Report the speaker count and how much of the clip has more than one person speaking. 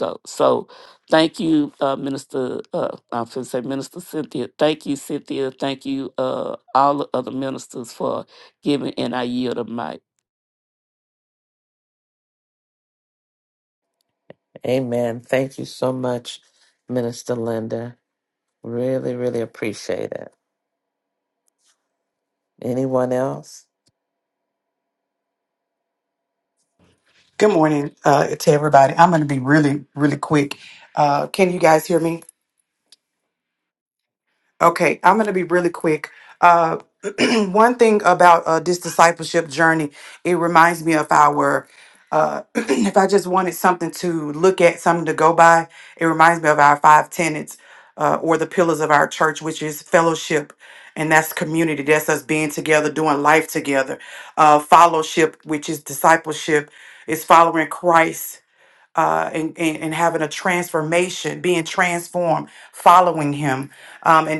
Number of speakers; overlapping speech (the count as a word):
three, no overlap